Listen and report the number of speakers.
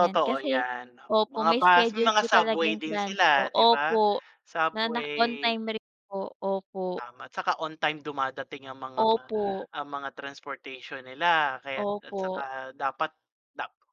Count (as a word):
two